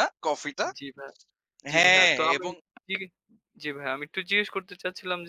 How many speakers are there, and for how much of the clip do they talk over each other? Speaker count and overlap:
2, about 15%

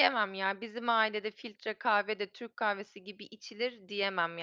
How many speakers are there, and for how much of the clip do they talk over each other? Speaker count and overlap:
1, no overlap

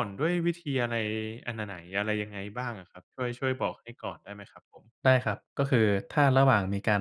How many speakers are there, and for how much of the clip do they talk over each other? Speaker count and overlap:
2, no overlap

